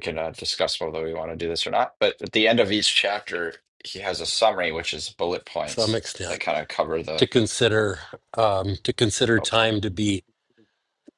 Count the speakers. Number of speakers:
2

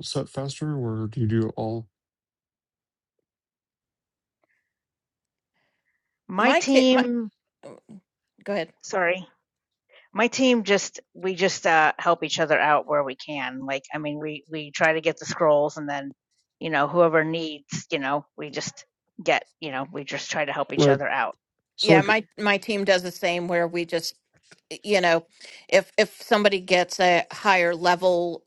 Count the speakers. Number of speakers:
3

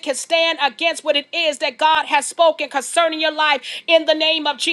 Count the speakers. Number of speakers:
1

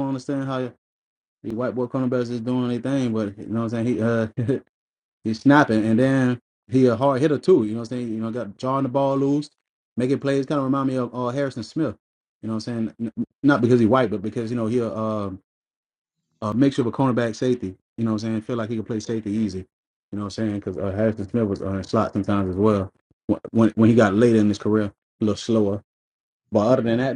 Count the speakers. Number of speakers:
1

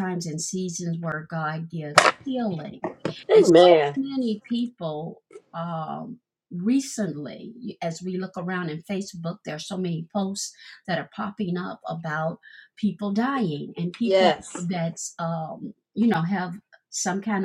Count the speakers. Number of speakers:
2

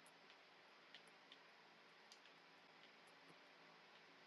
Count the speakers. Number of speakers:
0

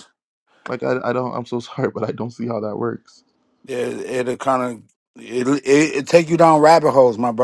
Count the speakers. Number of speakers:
2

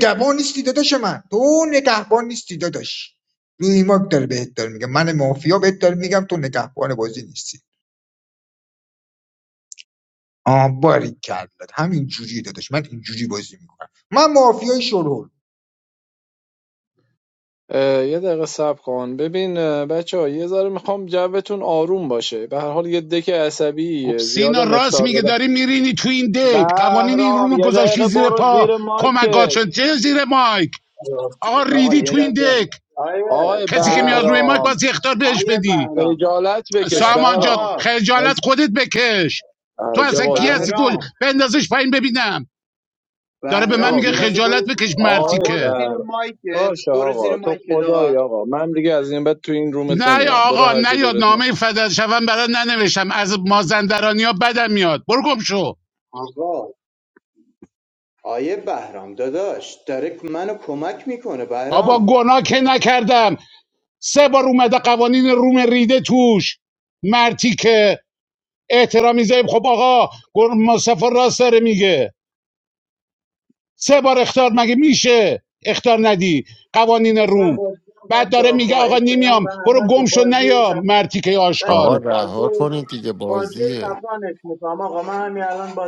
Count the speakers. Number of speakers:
5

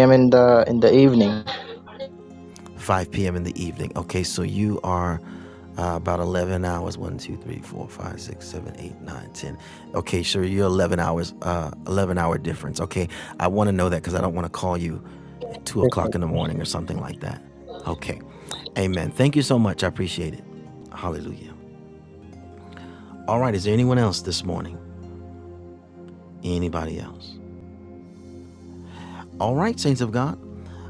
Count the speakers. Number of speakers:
2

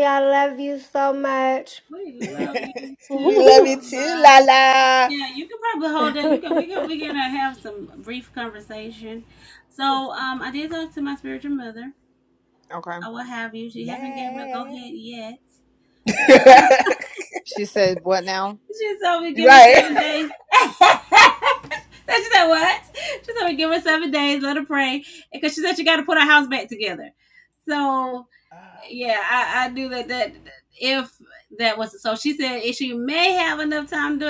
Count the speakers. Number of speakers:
4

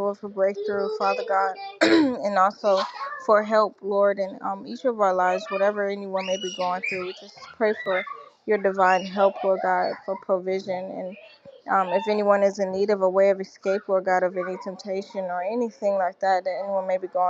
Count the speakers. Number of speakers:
1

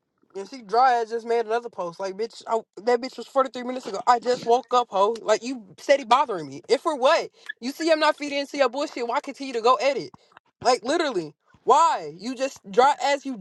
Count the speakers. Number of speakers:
1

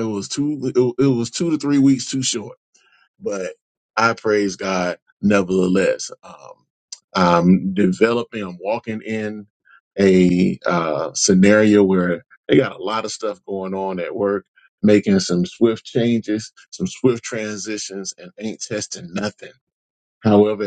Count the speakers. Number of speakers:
1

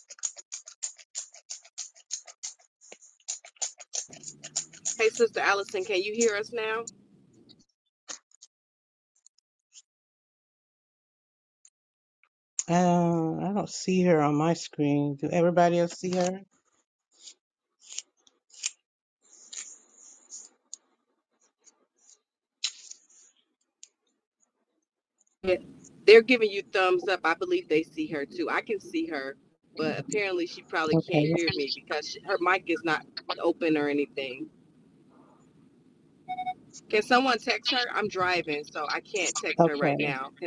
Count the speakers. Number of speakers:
2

